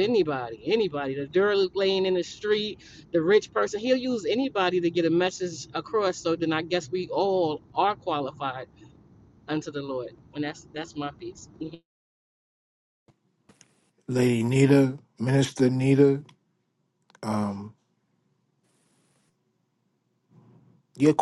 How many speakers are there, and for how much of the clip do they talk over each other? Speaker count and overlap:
two, no overlap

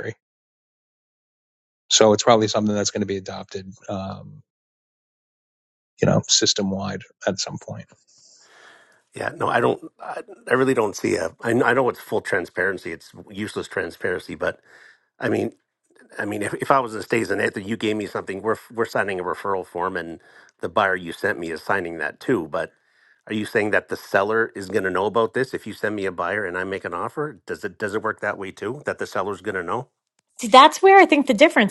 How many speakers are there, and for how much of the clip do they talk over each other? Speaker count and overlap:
three, no overlap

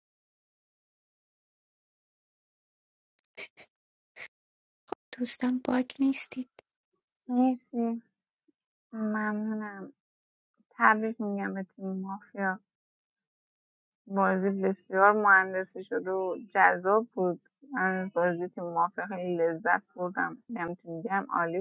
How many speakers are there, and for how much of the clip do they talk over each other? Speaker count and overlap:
two, no overlap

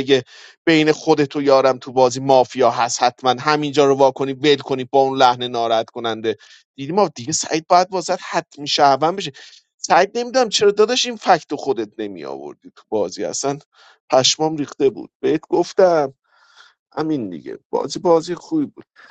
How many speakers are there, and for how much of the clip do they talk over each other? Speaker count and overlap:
one, no overlap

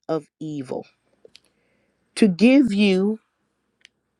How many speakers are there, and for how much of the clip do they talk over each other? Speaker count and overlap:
one, no overlap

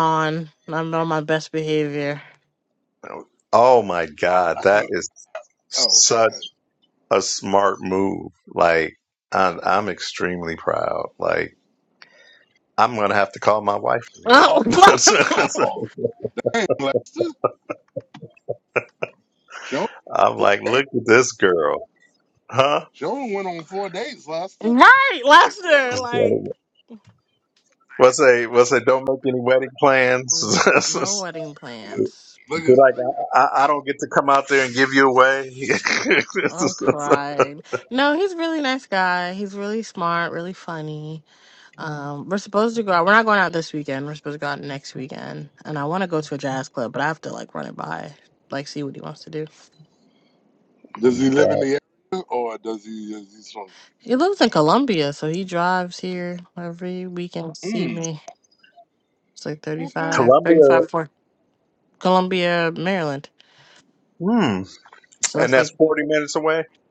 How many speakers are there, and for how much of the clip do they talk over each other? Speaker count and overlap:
three, about 5%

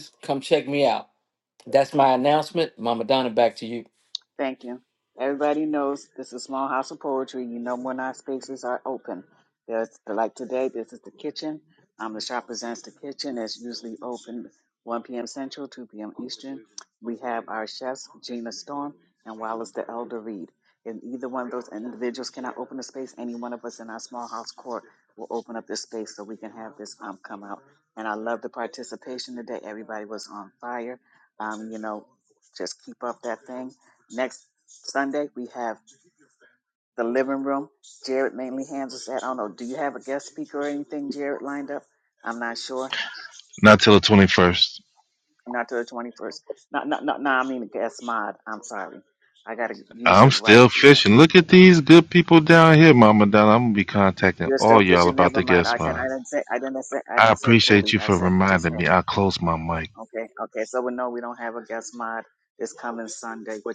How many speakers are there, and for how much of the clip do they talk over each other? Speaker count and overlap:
three, about 8%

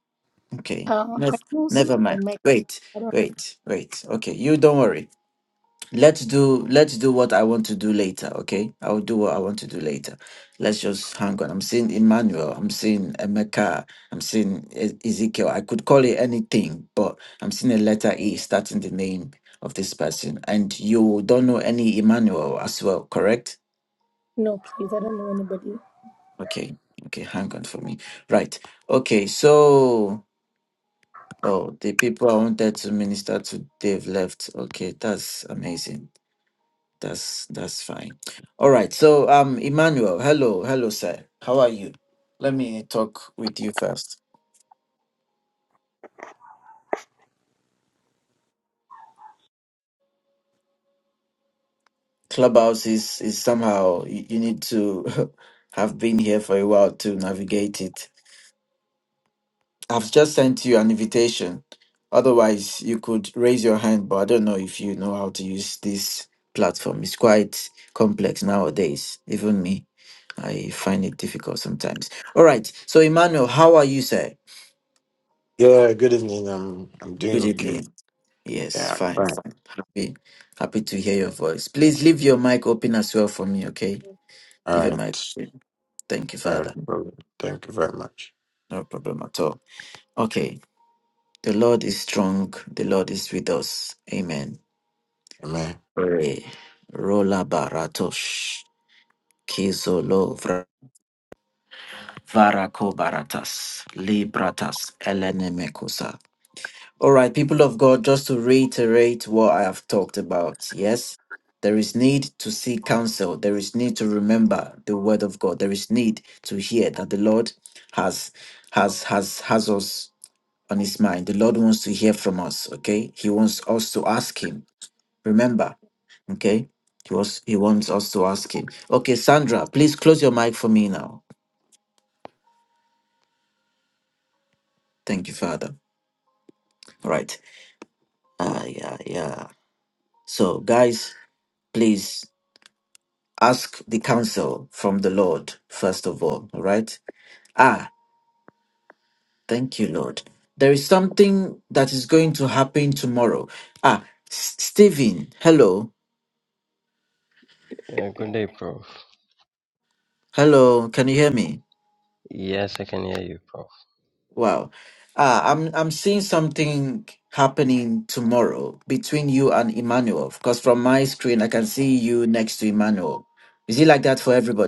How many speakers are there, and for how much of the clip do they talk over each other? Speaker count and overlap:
four, about 2%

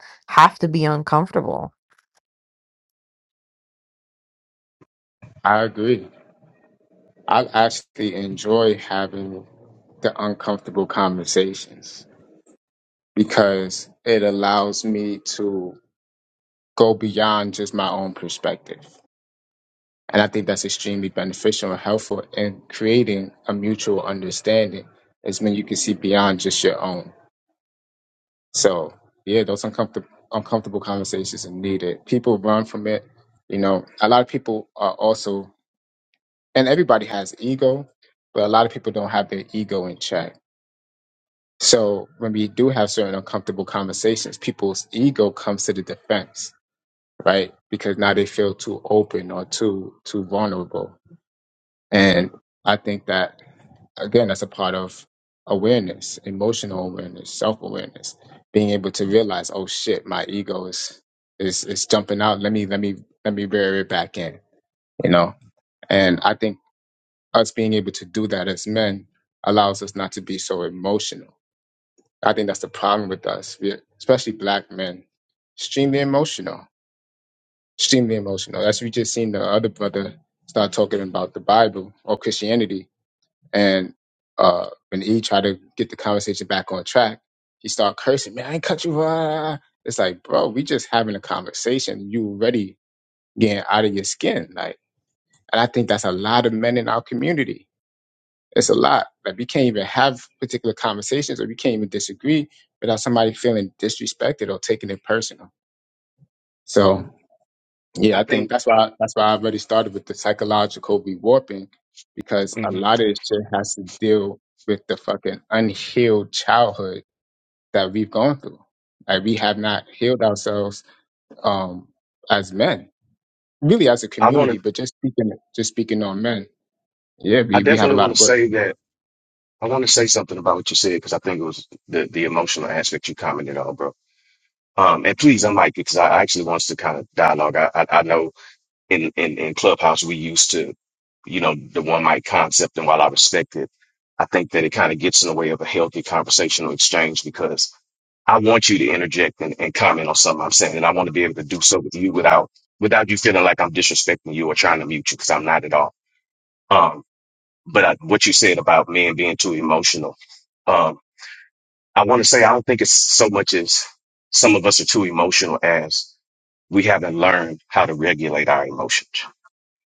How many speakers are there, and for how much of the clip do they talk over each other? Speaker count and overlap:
three, about 1%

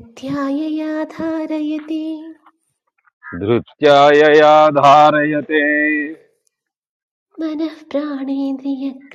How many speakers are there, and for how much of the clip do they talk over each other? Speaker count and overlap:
two, no overlap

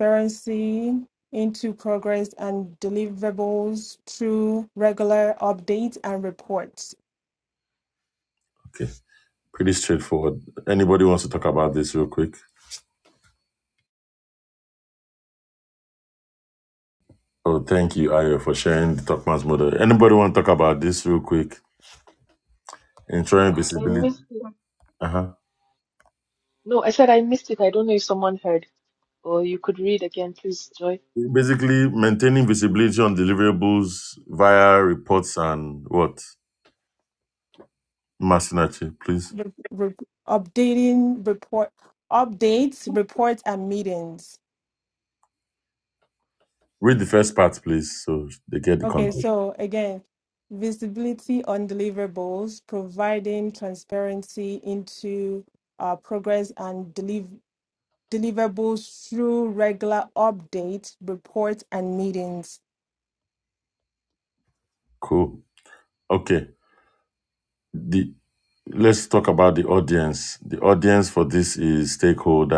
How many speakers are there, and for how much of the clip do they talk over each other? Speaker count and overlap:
three, about 1%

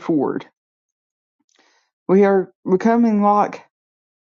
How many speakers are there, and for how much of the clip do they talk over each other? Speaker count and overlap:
one, no overlap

